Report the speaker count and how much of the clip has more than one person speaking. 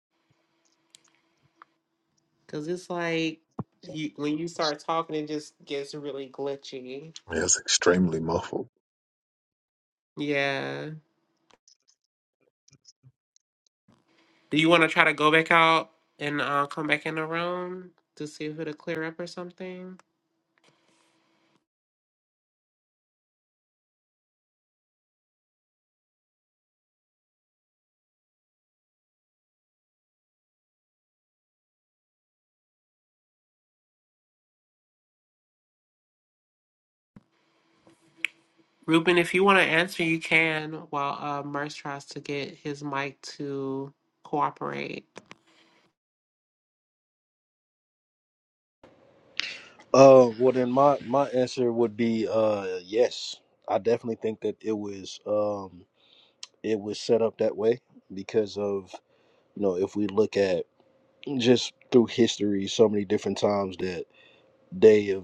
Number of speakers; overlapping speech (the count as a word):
three, no overlap